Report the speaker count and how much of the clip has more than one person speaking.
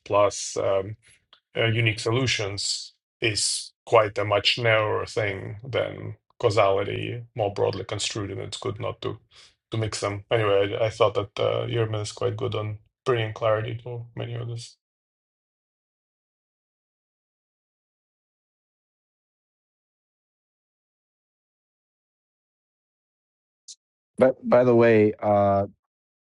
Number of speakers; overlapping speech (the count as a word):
two, no overlap